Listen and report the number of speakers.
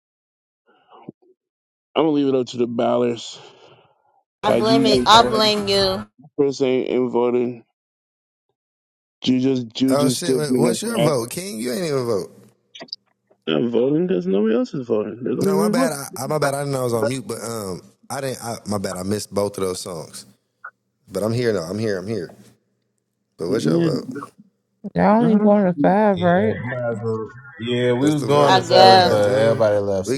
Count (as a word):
five